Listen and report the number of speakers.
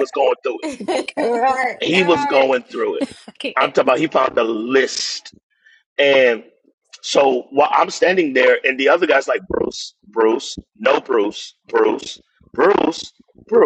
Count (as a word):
two